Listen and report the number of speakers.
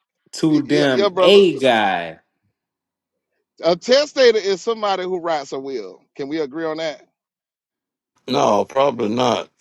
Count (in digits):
3